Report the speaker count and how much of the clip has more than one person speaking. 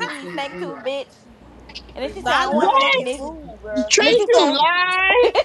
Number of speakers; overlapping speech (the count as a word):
three, about 29%